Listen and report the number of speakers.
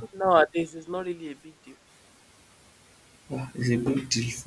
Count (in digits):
2